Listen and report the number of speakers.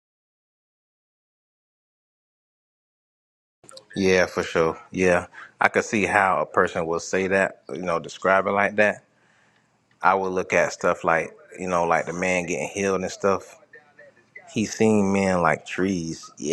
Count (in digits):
1